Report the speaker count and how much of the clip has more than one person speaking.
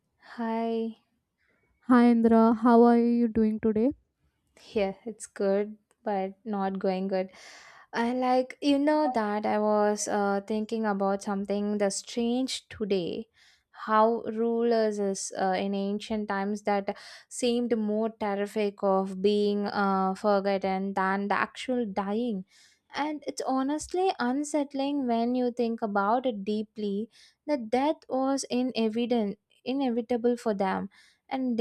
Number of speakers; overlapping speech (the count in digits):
2, no overlap